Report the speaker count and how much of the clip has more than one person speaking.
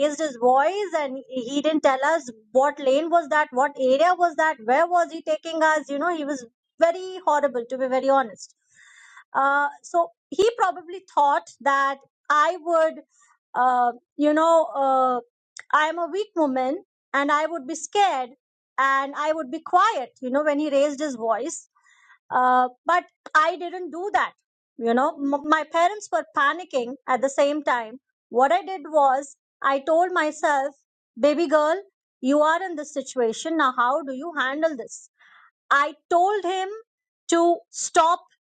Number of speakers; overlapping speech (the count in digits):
1, no overlap